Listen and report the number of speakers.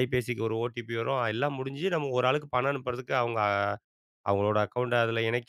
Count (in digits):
1